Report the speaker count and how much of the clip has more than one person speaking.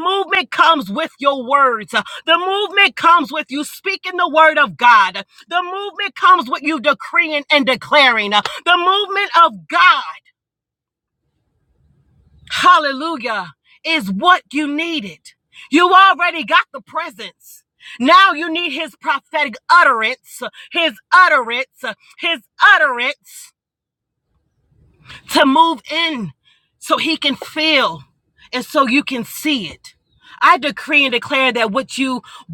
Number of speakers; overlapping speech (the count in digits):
1, no overlap